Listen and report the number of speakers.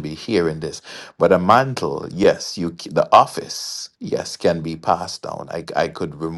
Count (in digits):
1